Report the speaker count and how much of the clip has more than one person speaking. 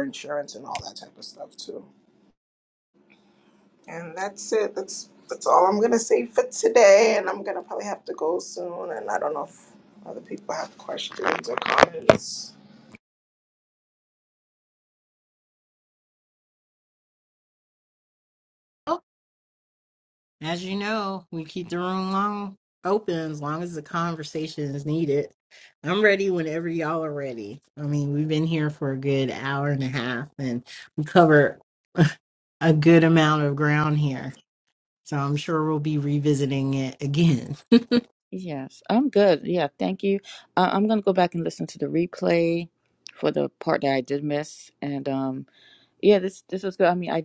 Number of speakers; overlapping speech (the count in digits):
3, no overlap